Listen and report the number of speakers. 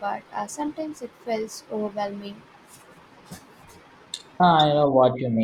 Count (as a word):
two